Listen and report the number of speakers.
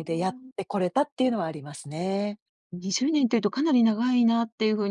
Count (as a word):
two